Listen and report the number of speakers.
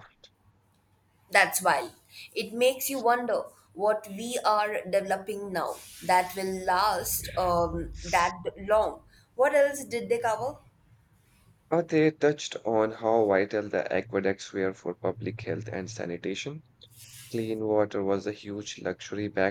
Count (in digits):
2